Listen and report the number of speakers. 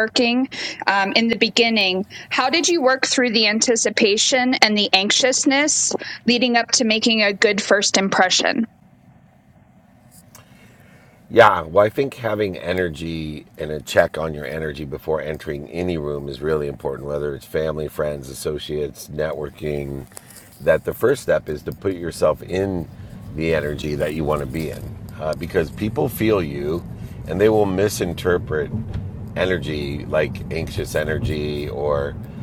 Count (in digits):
2